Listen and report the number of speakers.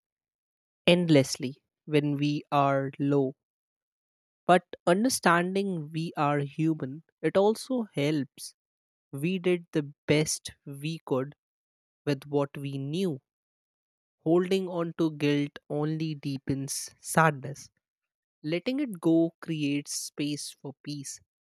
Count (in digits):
1